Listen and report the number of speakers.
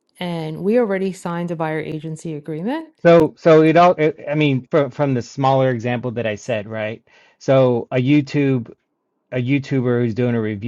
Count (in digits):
2